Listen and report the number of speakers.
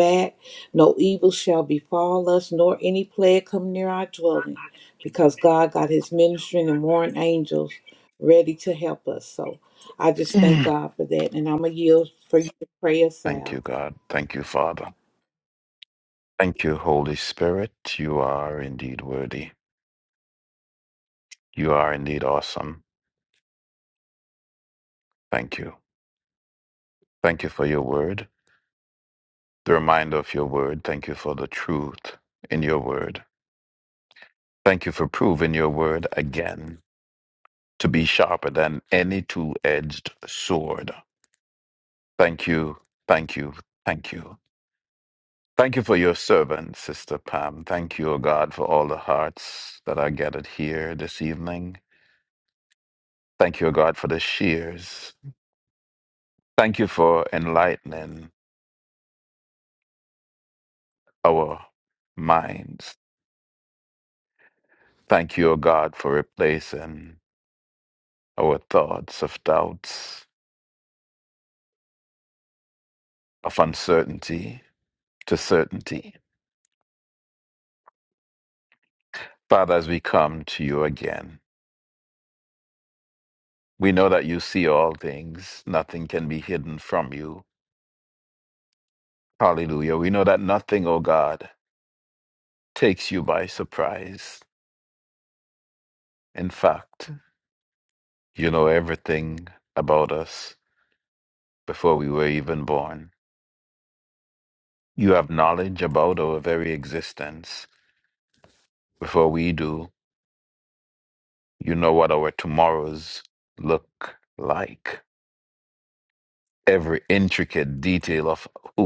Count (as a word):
two